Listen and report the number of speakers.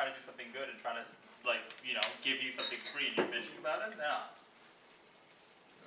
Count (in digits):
1